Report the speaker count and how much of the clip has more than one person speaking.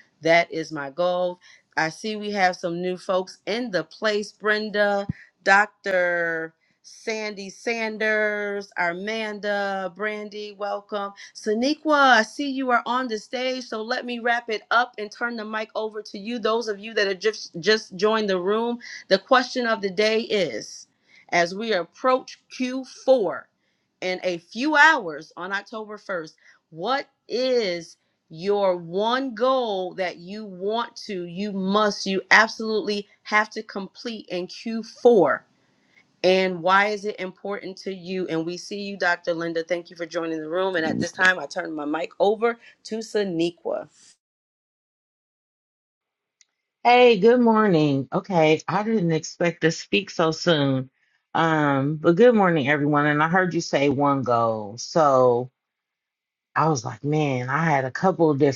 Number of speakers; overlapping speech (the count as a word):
two, no overlap